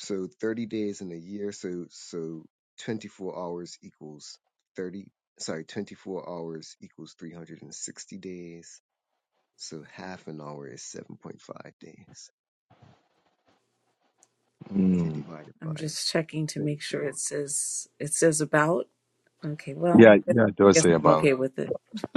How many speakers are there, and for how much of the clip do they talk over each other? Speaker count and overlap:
3, about 10%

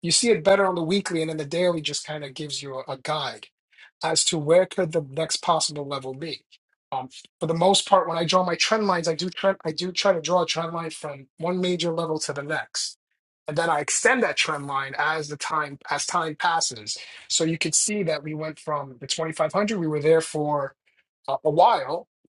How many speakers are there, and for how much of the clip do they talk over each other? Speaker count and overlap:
1, no overlap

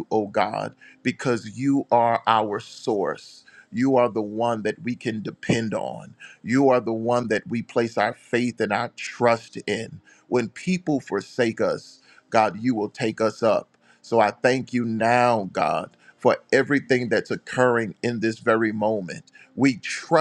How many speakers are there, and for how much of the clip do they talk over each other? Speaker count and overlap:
1, no overlap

